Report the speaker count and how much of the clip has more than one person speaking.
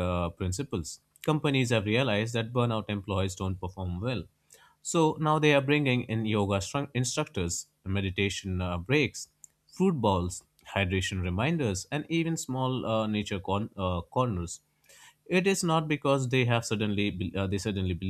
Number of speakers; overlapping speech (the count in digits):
1, no overlap